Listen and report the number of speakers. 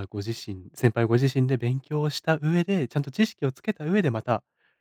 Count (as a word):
one